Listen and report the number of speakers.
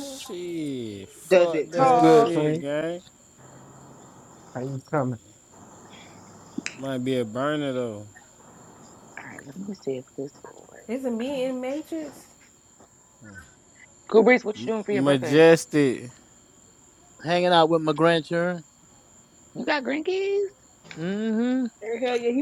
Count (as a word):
six